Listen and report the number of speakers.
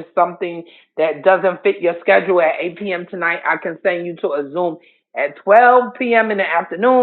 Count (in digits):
1